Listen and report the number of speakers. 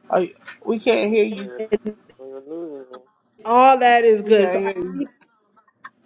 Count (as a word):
three